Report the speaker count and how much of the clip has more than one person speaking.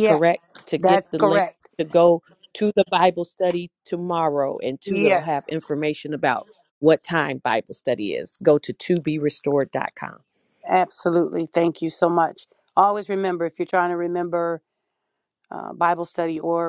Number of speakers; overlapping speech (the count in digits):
2, about 9%